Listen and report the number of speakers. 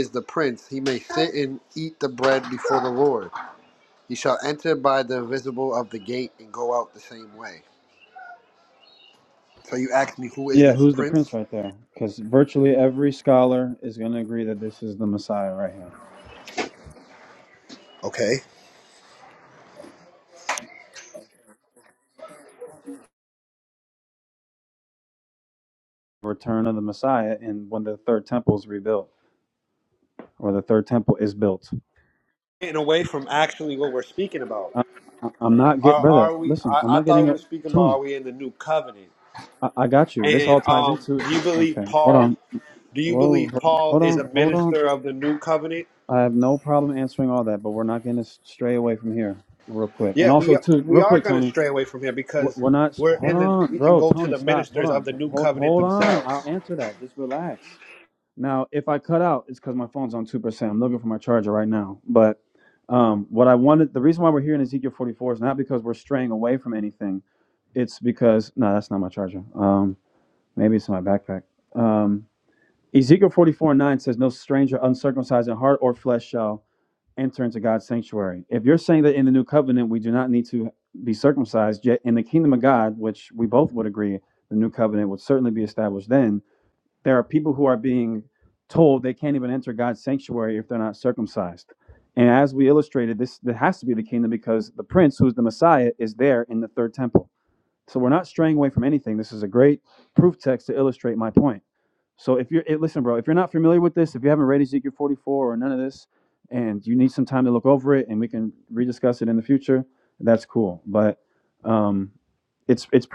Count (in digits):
2